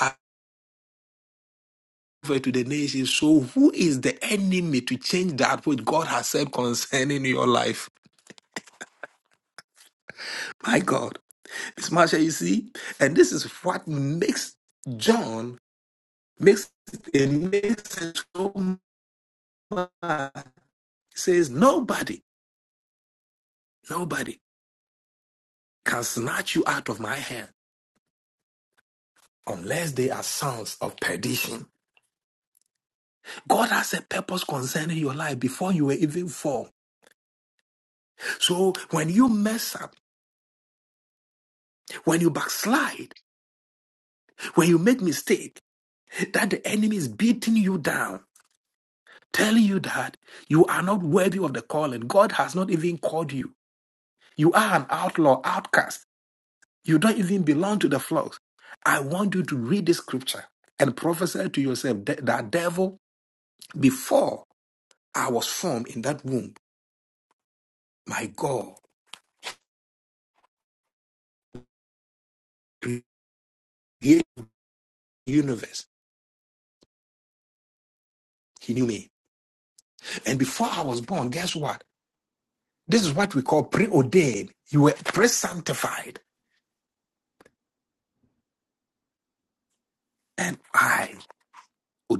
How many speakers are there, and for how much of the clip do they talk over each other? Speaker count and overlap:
1, no overlap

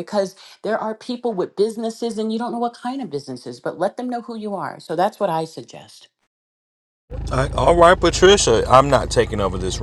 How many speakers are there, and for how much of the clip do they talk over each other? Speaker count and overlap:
2, no overlap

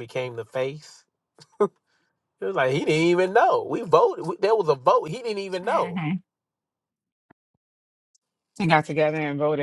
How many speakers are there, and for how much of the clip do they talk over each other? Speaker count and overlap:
2, about 4%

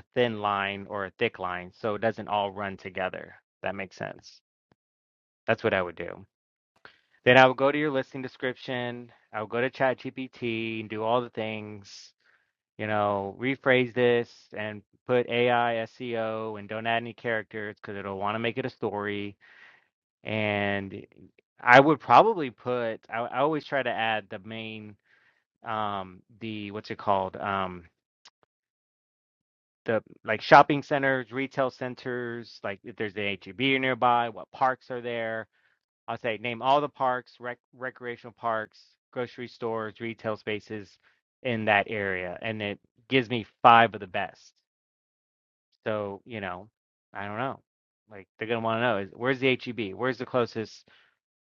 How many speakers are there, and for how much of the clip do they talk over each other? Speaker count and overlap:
1, no overlap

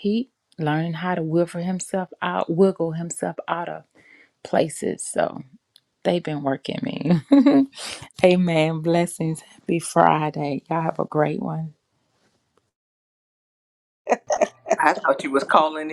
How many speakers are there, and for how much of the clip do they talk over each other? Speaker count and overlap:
2, no overlap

